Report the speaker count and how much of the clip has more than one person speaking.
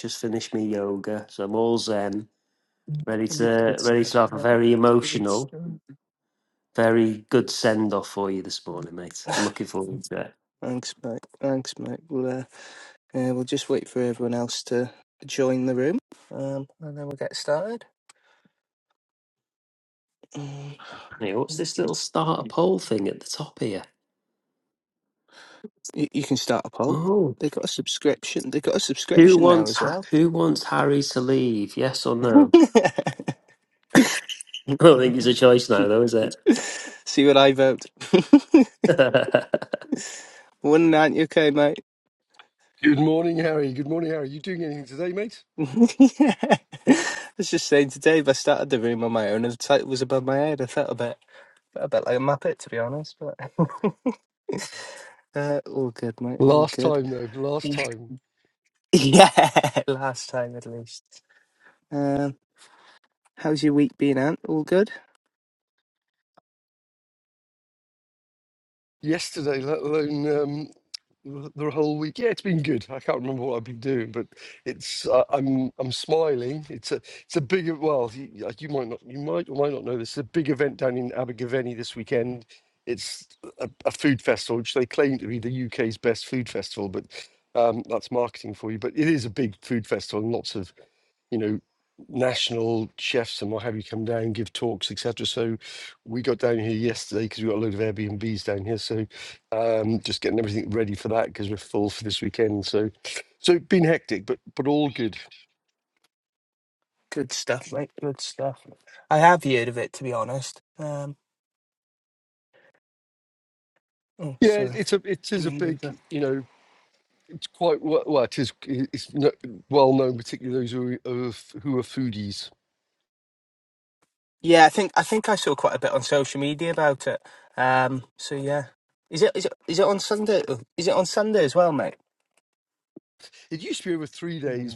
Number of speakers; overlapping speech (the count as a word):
three, about 3%